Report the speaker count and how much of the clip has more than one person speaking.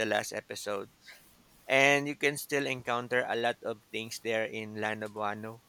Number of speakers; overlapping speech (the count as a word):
one, no overlap